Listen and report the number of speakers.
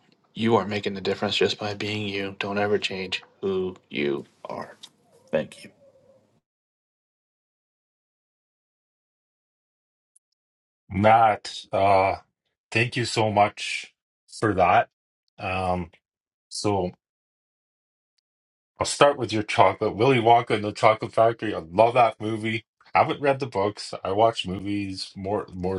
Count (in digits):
2